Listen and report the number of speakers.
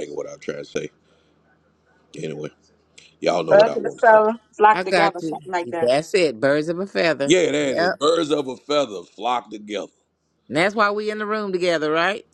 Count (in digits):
3